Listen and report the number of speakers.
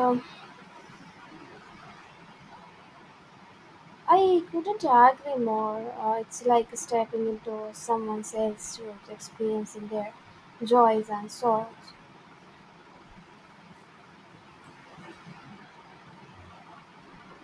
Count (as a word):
one